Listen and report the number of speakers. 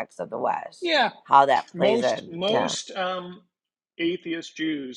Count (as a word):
two